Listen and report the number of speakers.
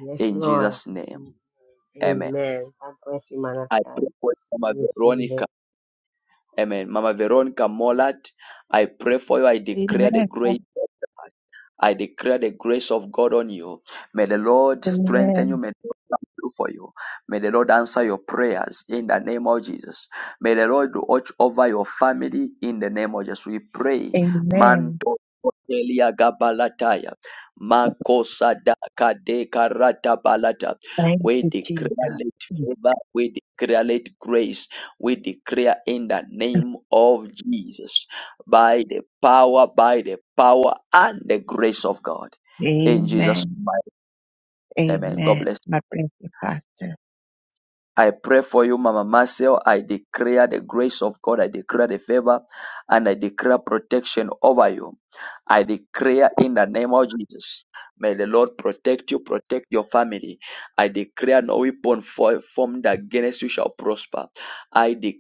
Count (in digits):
3